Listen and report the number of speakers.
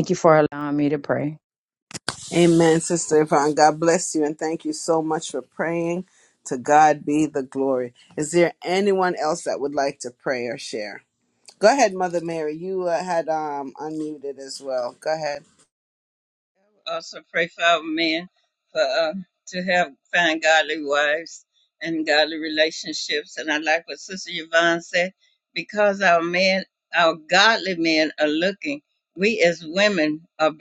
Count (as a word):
three